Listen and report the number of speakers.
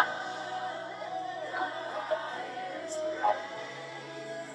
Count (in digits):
0